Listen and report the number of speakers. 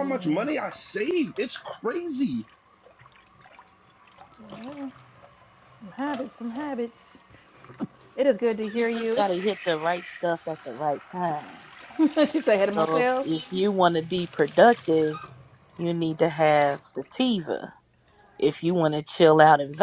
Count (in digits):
3